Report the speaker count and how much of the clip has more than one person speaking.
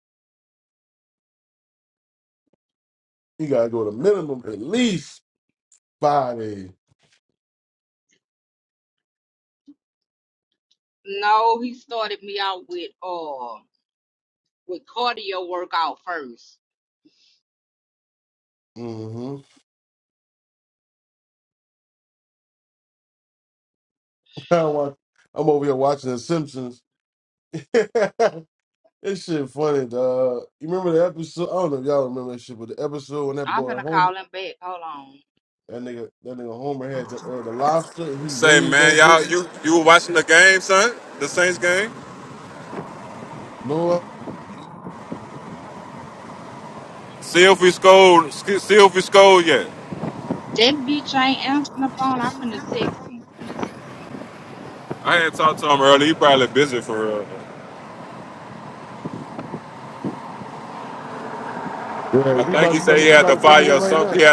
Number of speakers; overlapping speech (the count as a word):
three, about 6%